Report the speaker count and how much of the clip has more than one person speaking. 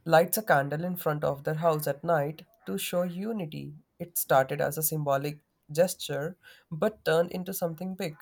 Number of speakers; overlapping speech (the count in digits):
1, no overlap